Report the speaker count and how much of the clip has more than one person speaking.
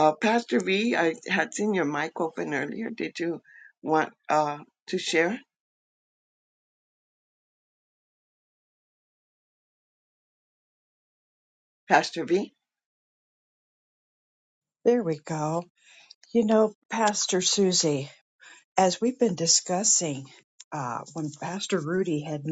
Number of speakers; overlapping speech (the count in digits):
2, no overlap